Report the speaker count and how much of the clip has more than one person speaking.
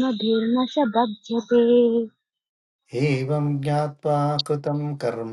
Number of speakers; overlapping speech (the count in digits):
2, no overlap